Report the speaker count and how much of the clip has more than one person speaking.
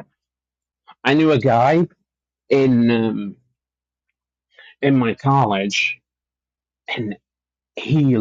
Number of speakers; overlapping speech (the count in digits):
1, no overlap